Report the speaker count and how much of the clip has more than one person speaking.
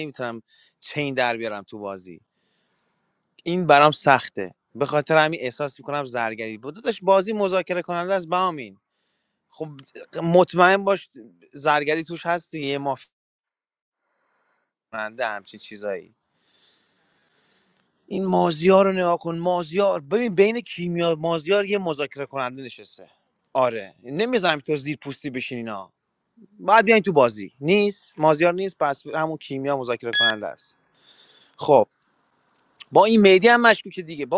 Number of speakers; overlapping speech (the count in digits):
1, no overlap